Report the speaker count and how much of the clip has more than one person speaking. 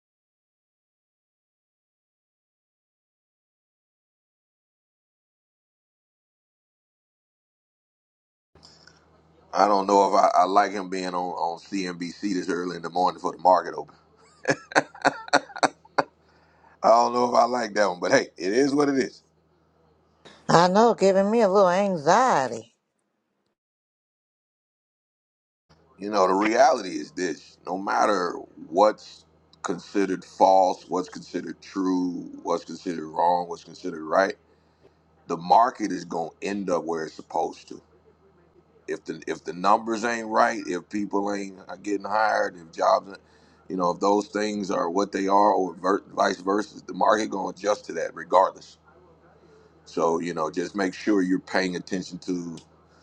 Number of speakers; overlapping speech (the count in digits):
2, no overlap